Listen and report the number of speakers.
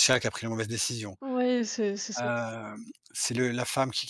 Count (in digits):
2